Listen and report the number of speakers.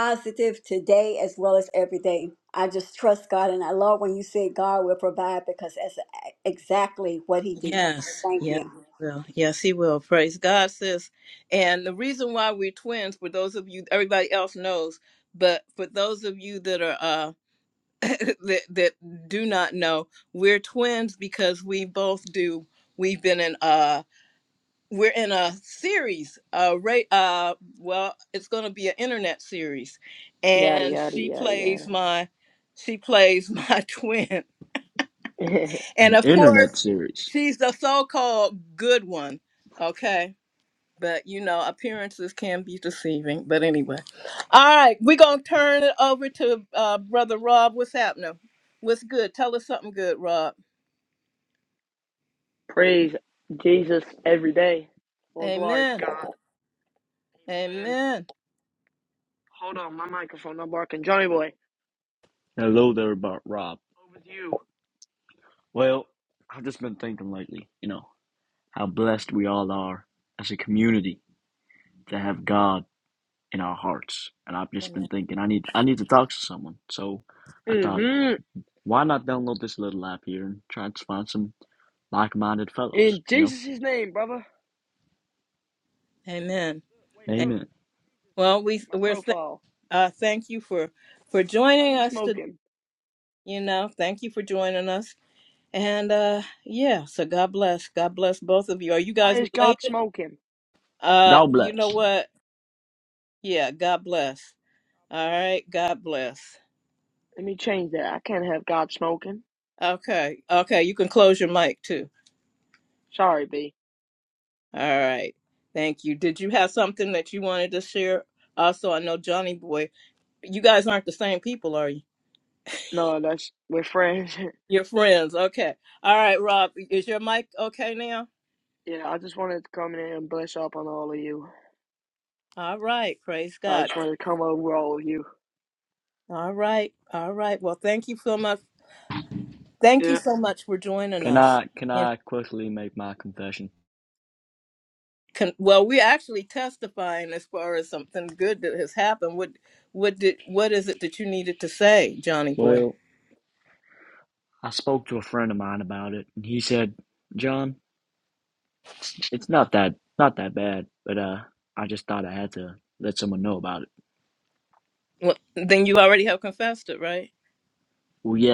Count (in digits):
4